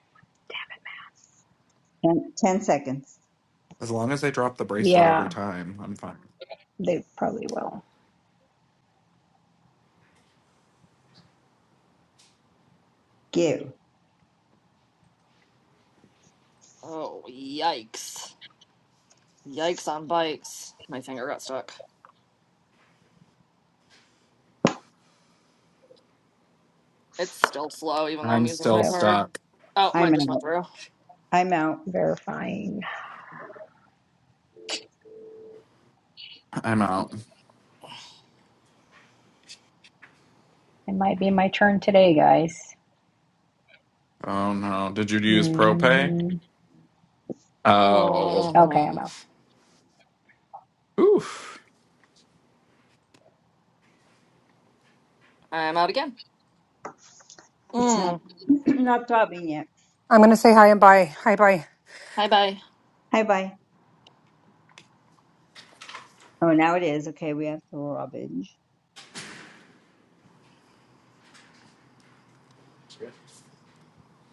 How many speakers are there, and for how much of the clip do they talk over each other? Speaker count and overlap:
5, about 6%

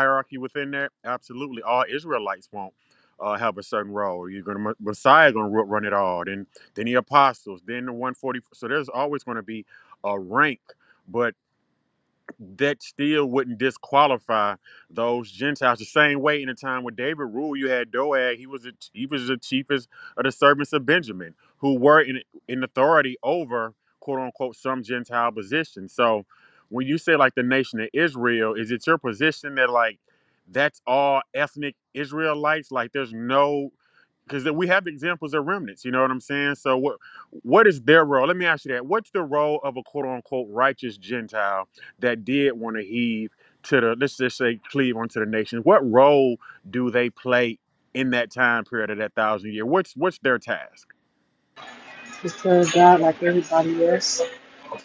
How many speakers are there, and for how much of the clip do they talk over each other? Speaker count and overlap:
2, no overlap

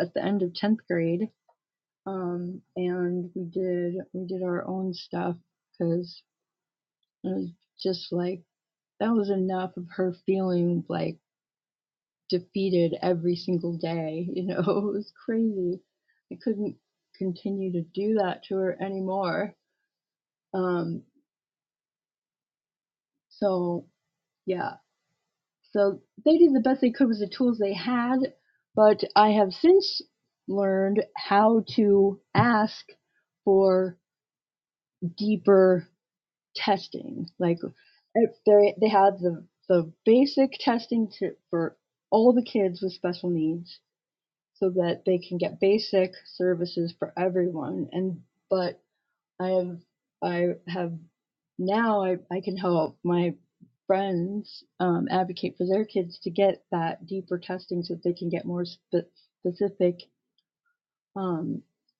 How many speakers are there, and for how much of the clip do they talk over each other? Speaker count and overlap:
1, no overlap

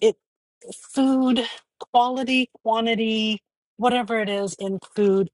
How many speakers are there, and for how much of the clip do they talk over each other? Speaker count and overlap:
1, no overlap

